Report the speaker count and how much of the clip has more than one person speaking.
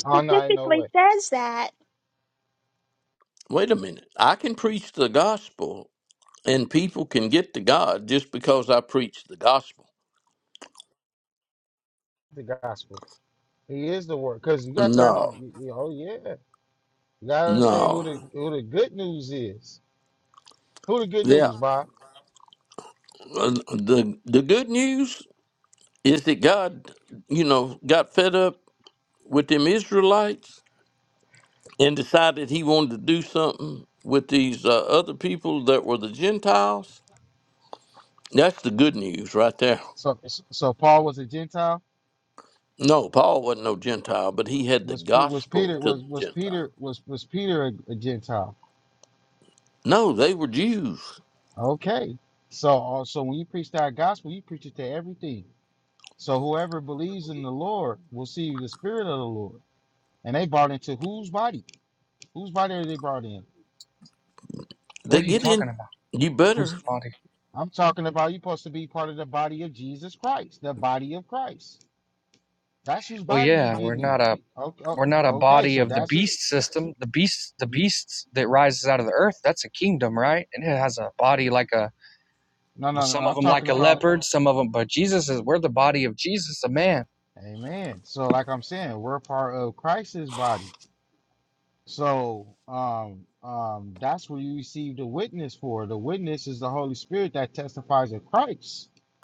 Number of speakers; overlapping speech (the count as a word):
four, about 8%